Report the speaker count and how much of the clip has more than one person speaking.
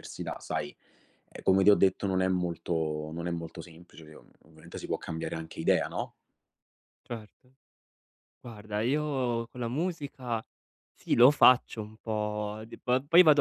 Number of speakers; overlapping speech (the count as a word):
two, no overlap